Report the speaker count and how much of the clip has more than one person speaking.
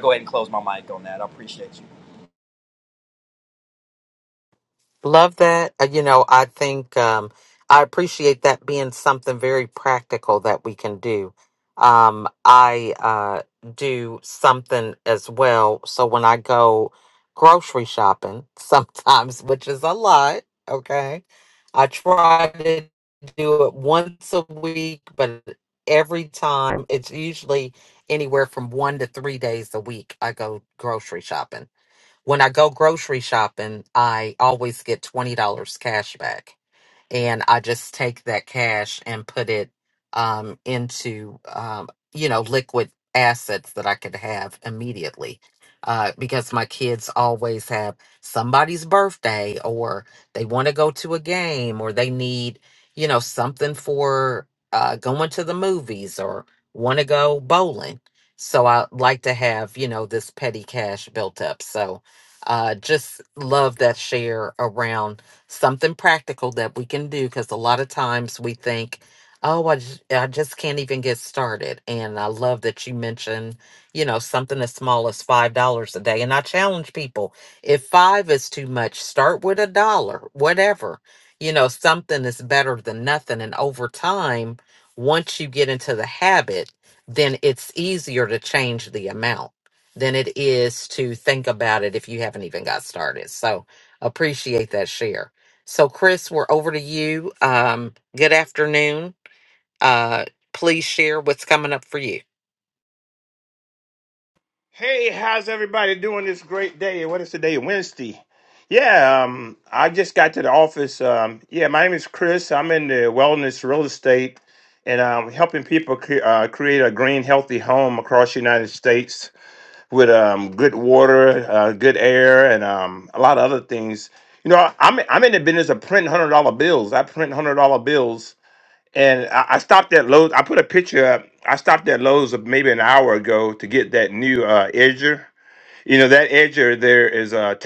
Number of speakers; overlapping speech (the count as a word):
three, no overlap